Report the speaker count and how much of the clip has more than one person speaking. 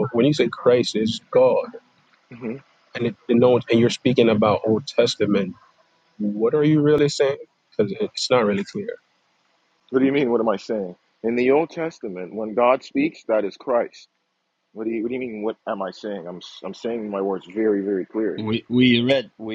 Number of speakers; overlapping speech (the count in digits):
3, under 1%